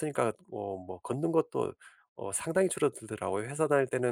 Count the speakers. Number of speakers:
1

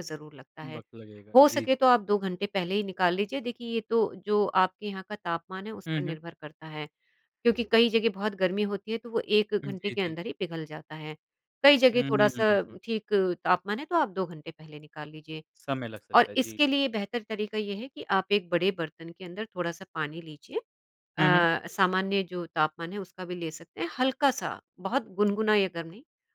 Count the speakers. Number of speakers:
2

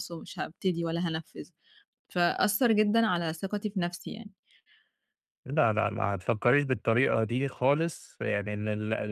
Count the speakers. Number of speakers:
2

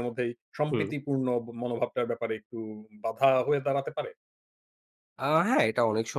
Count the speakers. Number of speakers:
2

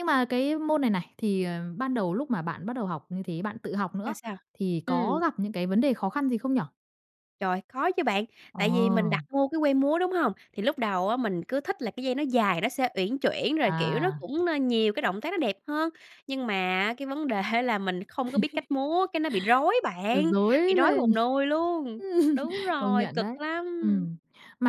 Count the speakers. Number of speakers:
2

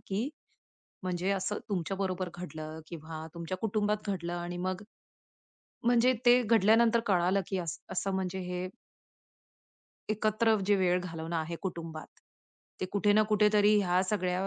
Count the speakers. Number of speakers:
1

